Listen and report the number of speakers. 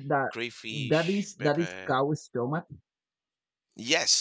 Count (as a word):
two